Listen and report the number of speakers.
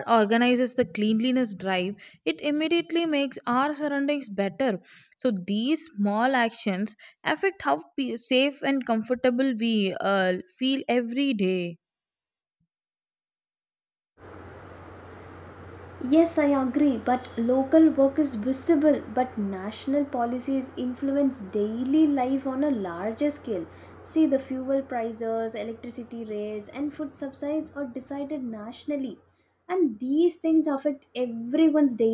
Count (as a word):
two